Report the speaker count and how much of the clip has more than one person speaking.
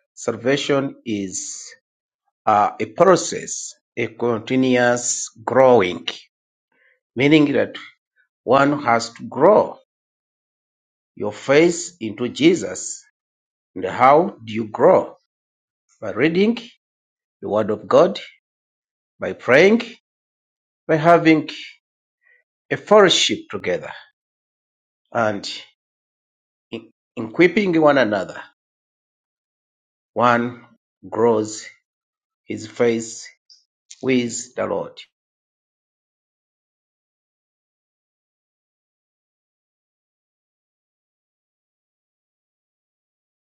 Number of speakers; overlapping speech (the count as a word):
one, no overlap